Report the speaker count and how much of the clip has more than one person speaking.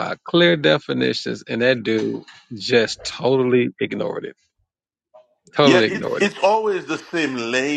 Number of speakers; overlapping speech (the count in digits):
2, about 9%